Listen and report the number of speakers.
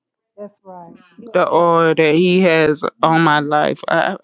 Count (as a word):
two